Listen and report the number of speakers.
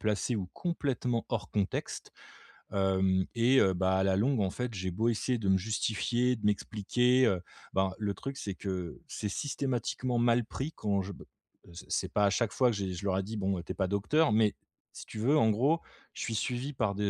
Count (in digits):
1